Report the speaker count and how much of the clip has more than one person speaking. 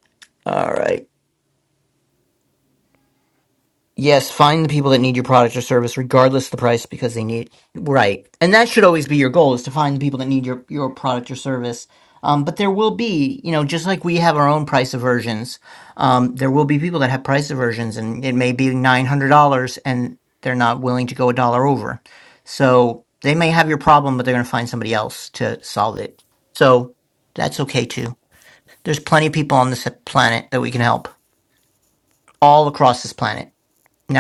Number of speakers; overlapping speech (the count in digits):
1, no overlap